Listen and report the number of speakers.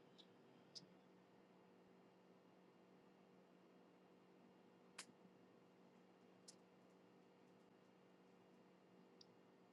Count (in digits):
0